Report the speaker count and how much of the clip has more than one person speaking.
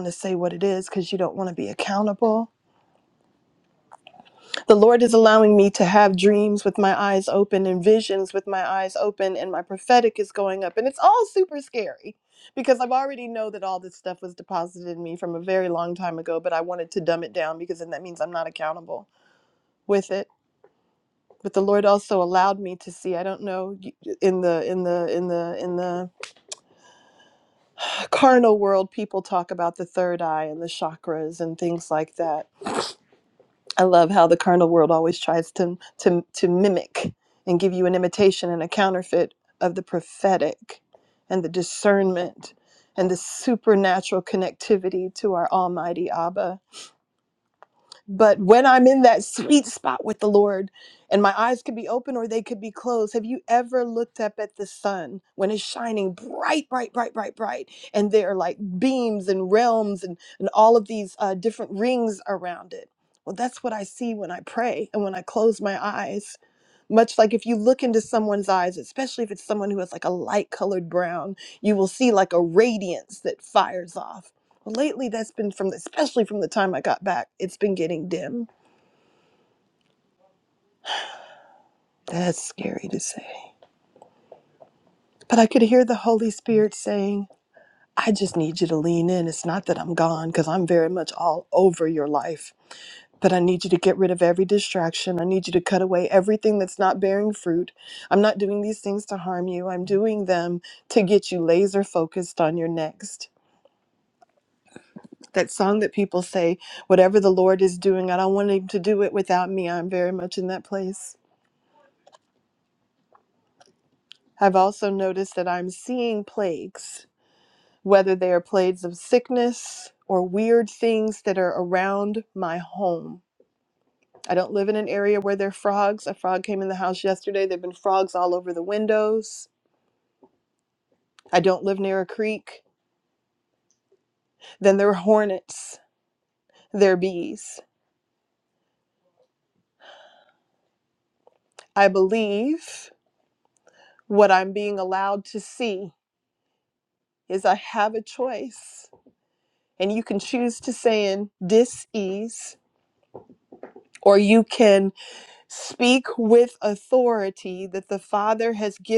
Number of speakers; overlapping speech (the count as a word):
one, no overlap